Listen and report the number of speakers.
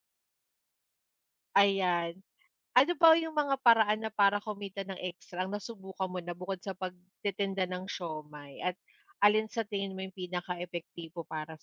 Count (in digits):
1